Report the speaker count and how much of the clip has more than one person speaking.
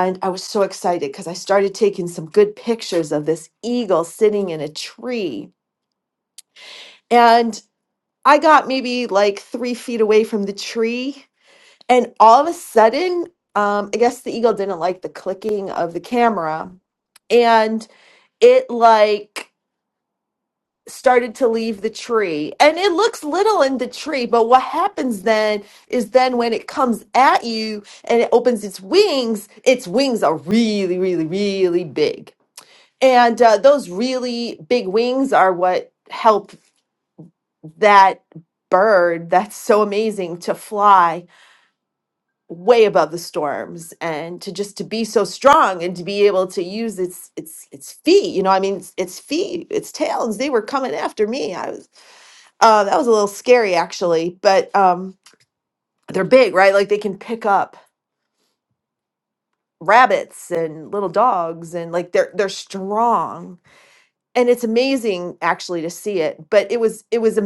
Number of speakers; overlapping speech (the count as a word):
one, no overlap